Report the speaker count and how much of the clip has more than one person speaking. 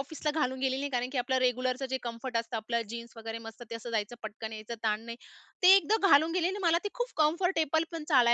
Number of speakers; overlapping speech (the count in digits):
1, no overlap